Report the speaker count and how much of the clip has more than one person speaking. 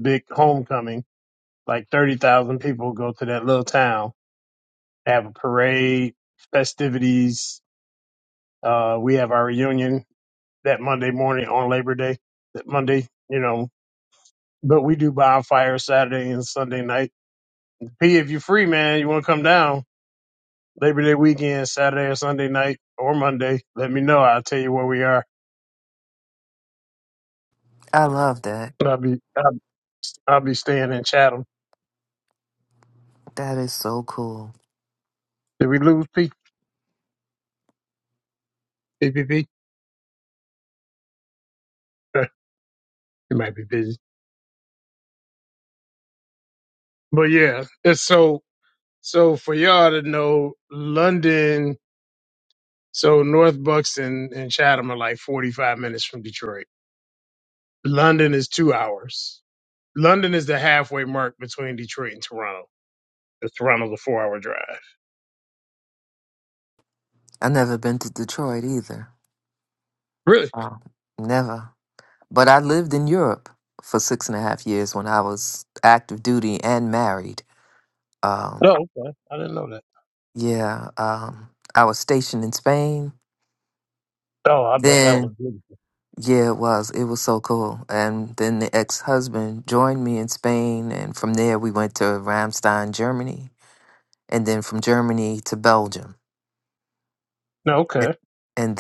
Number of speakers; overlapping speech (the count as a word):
two, about 1%